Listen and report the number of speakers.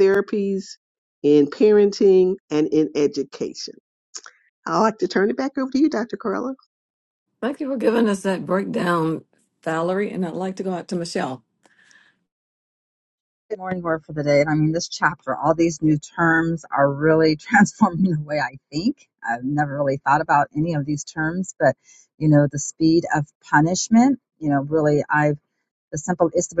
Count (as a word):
three